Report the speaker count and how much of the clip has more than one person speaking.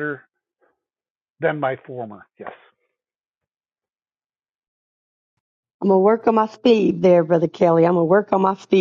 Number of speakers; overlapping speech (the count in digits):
2, no overlap